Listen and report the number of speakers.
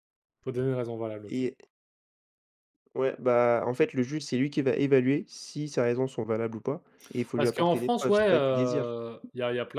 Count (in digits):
2